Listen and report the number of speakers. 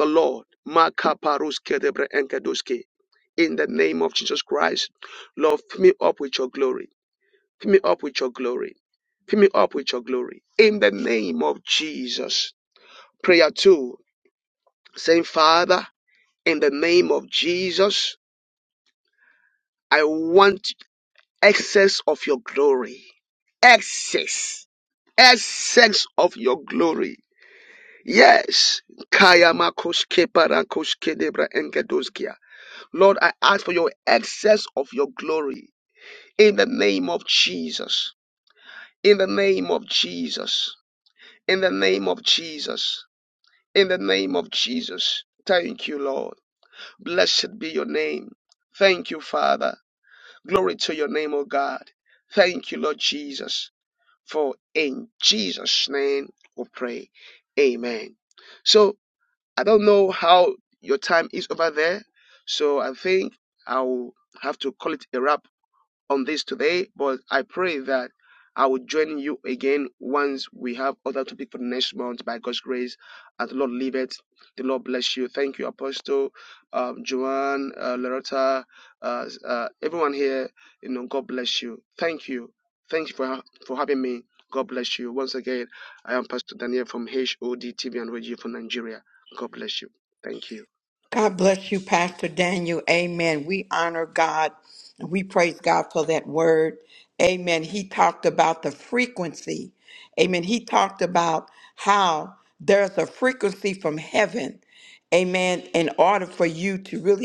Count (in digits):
2